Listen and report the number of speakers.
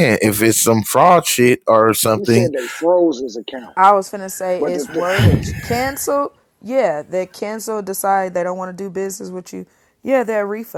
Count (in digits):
3